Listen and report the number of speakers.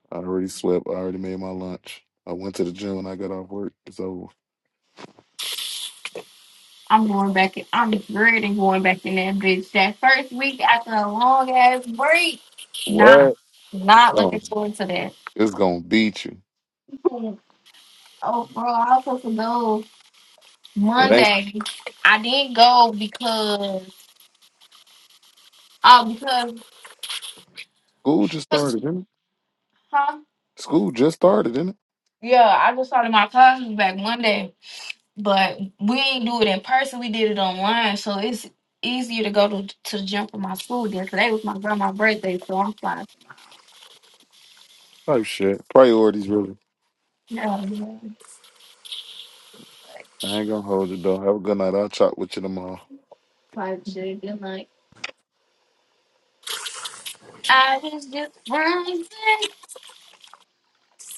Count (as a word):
two